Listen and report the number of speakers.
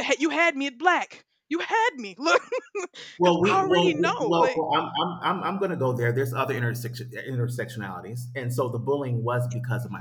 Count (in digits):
2